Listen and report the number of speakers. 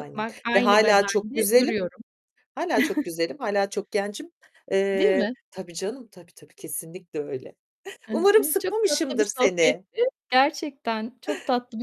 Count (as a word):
two